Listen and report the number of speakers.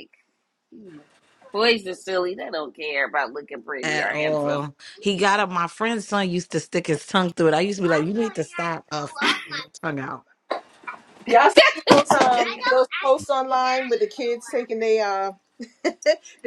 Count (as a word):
three